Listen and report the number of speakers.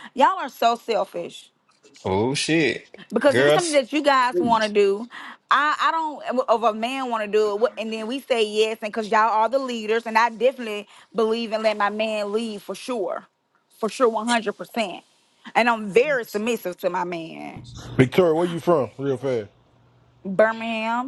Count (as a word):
three